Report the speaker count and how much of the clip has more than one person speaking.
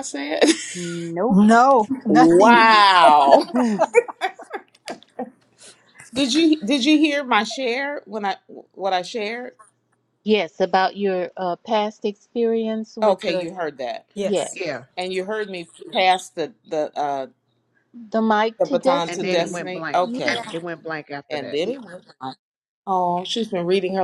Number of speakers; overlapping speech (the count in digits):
4, about 14%